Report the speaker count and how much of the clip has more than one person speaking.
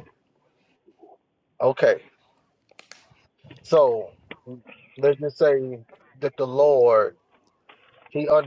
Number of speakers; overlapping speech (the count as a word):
one, no overlap